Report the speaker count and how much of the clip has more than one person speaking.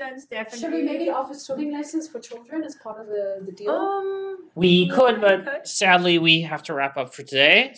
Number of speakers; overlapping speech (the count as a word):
three, about 27%